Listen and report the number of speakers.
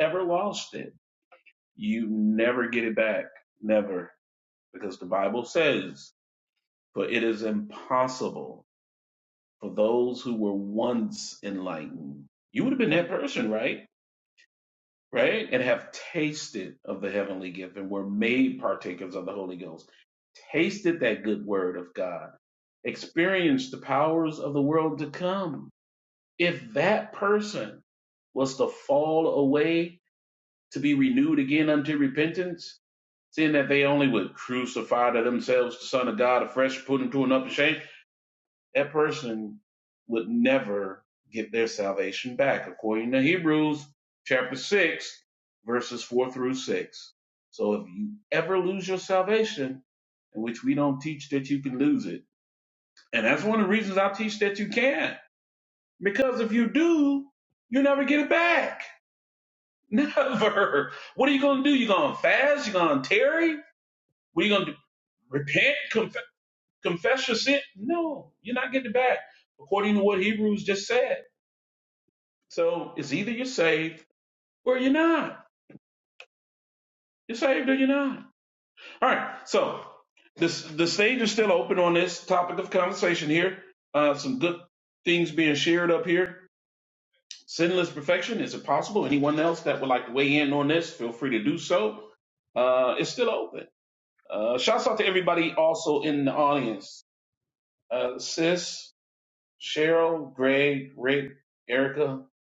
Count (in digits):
1